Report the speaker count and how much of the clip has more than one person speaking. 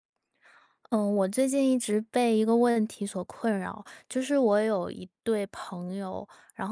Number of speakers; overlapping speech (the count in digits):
1, no overlap